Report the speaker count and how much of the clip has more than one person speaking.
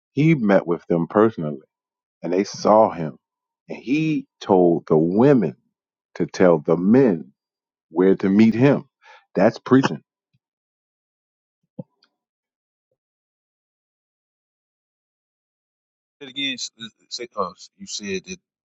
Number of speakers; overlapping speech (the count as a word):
two, no overlap